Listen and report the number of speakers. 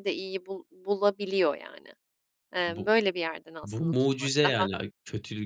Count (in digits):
2